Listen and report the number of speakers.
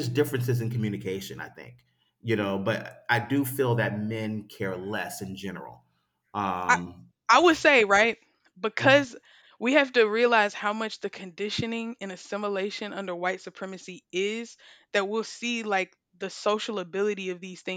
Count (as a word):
two